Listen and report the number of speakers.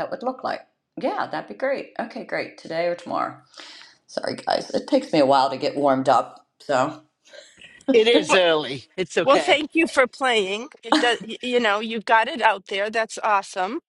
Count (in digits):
3